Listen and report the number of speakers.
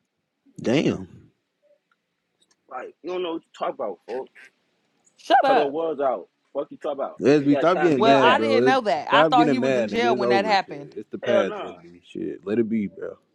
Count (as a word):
three